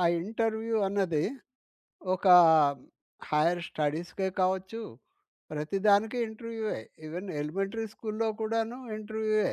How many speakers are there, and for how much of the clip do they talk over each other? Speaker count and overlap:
1, no overlap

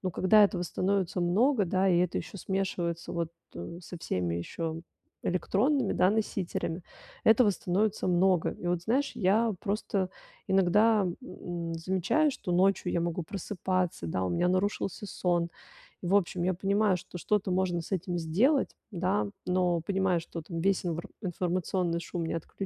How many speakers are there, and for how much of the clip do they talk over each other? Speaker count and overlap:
1, no overlap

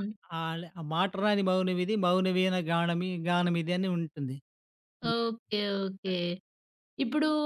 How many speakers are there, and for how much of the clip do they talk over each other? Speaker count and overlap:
2, about 2%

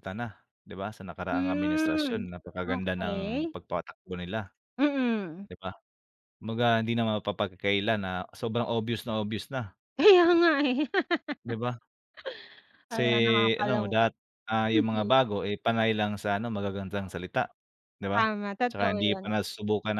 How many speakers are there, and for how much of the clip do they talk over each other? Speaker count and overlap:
2, about 20%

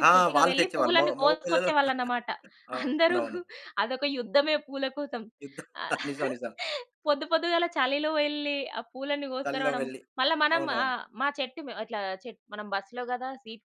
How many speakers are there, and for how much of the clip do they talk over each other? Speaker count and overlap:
2, about 23%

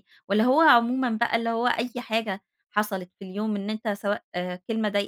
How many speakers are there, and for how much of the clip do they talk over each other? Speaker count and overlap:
1, no overlap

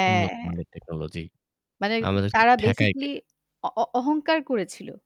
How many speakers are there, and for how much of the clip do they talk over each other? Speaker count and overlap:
2, about 22%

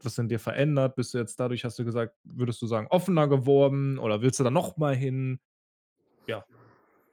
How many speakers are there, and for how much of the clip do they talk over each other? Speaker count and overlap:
1, no overlap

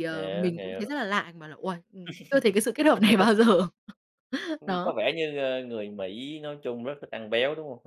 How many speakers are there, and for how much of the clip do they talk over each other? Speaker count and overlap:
2, about 14%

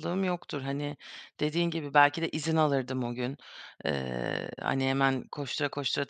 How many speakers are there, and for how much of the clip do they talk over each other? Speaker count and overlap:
1, no overlap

